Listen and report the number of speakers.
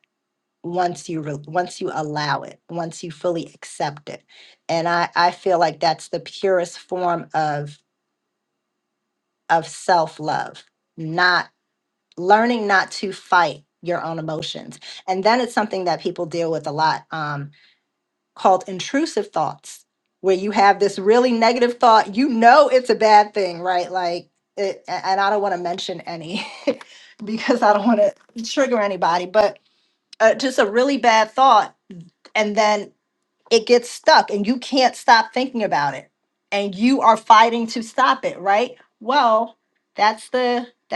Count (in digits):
1